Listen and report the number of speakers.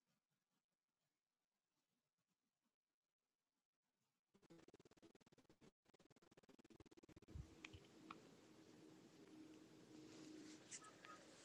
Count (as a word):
zero